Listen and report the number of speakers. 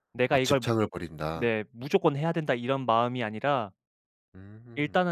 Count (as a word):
two